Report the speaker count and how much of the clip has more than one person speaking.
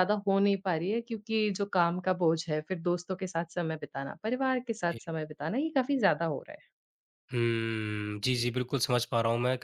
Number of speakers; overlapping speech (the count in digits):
2, about 1%